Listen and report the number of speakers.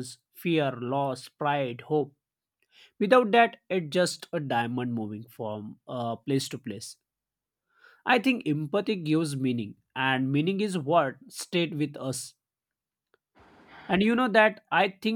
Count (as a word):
one